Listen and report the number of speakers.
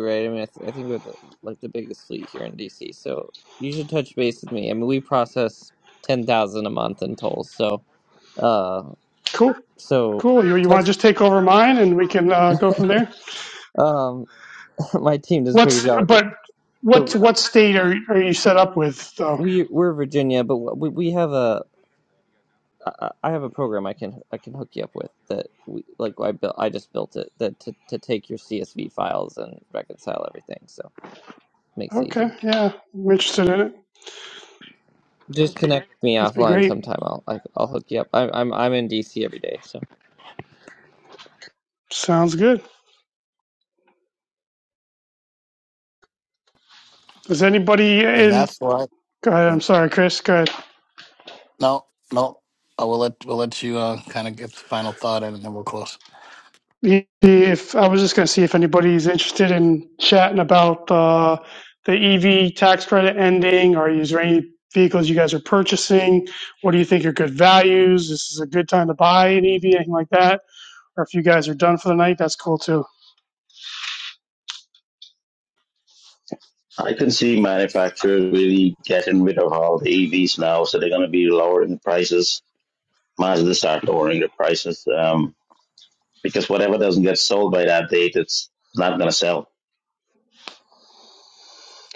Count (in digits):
4